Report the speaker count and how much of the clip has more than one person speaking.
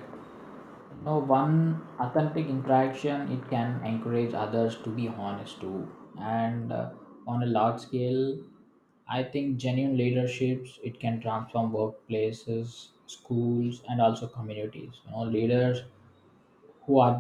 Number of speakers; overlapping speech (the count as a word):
one, no overlap